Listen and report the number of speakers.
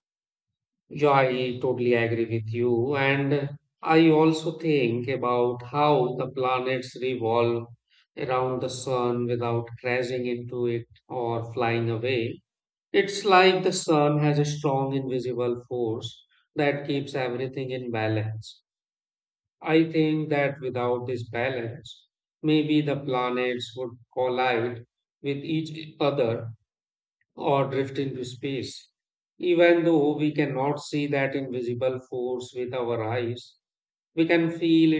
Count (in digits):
1